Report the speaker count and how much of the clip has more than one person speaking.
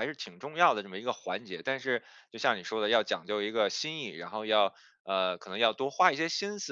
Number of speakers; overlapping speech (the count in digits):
1, no overlap